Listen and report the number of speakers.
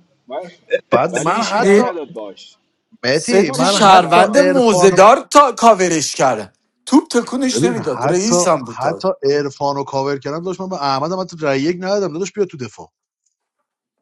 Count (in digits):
3